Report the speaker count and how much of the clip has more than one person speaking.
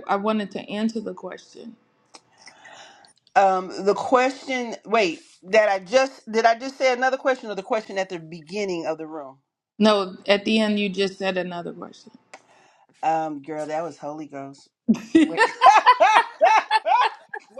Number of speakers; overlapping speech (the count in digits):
2, no overlap